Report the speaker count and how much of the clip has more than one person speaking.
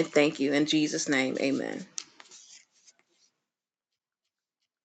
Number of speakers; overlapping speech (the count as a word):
one, no overlap